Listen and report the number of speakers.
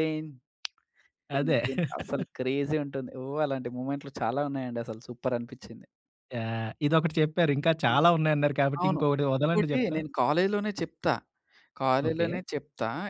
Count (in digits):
2